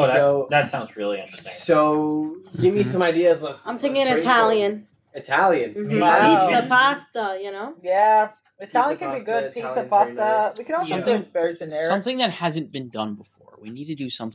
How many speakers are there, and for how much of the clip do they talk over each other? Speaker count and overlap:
5, about 42%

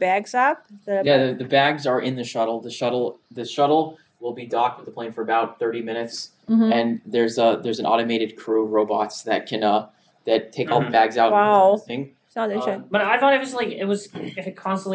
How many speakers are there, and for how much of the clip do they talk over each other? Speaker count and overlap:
3, about 8%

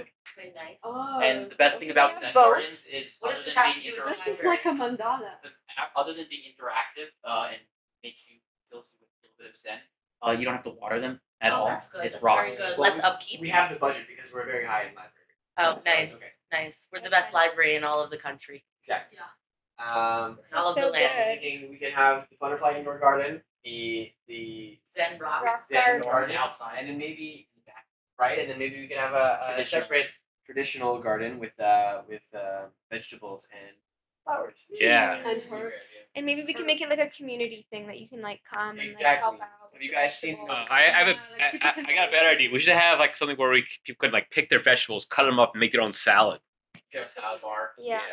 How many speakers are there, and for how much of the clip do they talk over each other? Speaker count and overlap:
6, about 33%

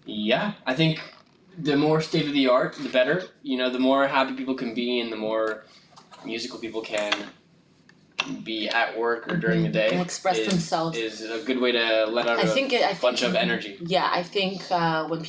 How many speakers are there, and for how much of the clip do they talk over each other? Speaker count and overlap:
2, about 12%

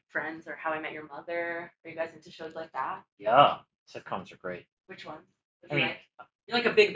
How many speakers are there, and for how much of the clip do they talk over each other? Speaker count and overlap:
2, about 3%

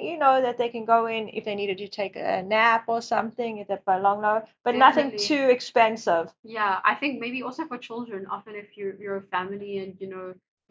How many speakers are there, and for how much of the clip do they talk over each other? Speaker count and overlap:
2, about 6%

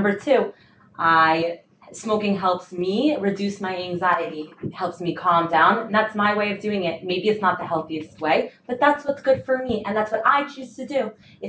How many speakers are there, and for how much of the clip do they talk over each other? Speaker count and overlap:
1, no overlap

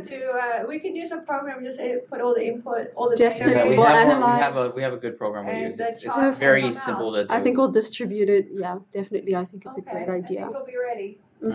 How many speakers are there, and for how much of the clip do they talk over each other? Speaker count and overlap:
3, about 41%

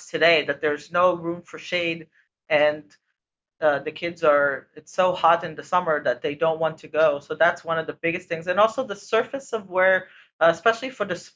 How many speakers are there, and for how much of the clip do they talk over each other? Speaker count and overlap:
1, no overlap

